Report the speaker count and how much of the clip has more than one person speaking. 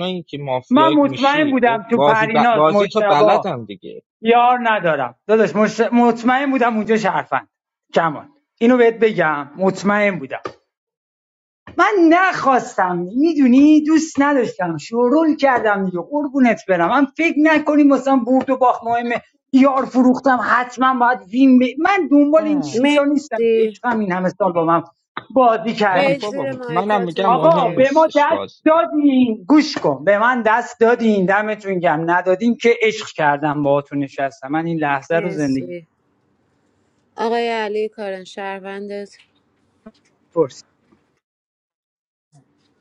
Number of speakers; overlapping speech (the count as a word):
three, about 16%